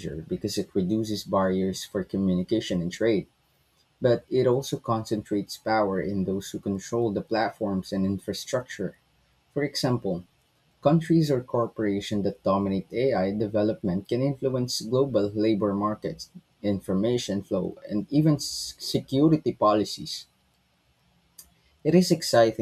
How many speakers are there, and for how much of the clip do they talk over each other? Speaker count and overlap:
one, no overlap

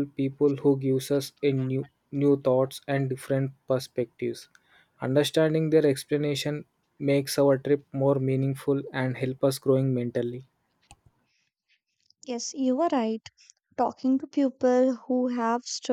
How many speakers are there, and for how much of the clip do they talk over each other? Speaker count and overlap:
two, no overlap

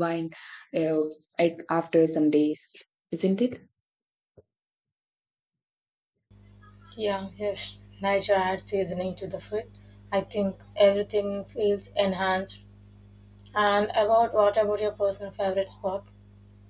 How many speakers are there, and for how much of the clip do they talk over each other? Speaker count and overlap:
two, no overlap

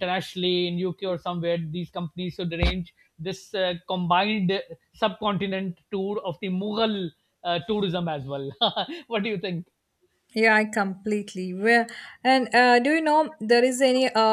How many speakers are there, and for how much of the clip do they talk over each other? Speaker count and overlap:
two, no overlap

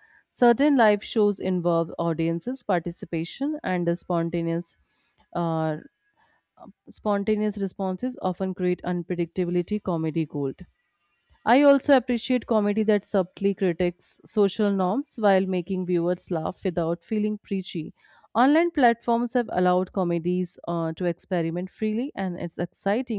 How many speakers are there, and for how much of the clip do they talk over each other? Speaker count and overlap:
one, no overlap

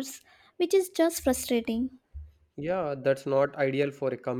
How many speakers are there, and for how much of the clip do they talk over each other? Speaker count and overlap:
two, no overlap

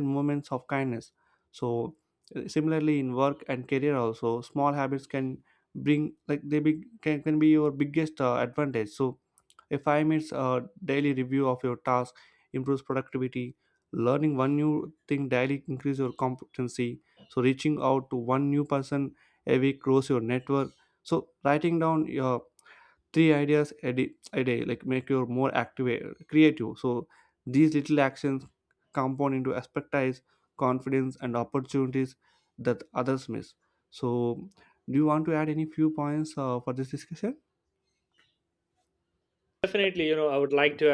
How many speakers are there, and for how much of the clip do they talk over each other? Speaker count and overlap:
two, no overlap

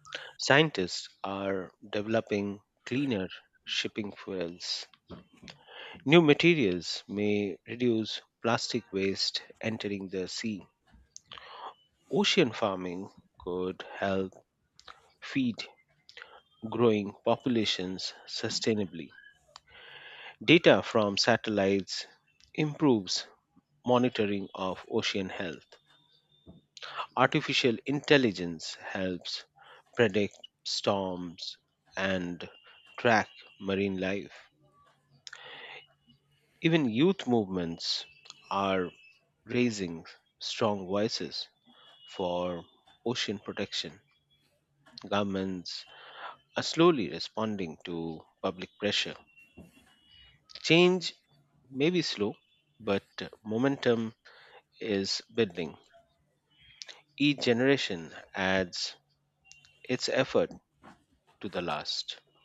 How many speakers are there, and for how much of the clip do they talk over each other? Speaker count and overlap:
one, no overlap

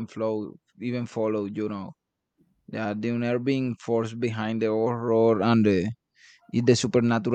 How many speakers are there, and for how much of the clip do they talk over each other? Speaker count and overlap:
one, no overlap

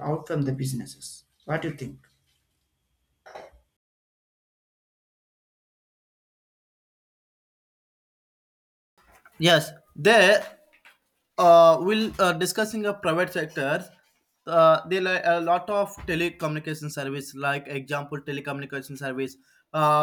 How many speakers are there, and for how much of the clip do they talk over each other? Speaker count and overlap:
two, no overlap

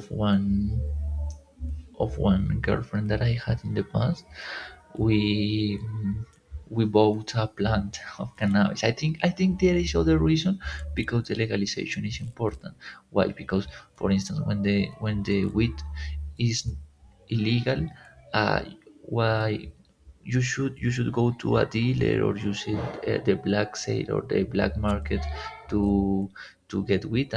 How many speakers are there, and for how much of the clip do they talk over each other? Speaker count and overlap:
one, no overlap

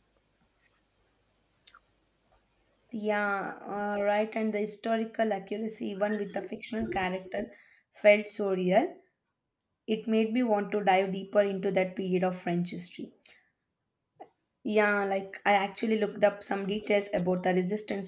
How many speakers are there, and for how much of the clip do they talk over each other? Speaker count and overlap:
one, no overlap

